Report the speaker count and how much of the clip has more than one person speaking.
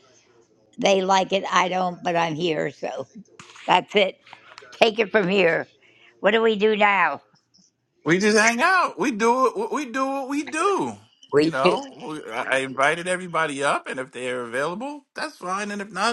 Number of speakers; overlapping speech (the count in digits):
2, about 3%